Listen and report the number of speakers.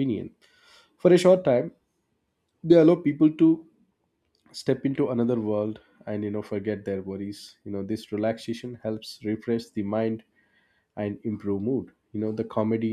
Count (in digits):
1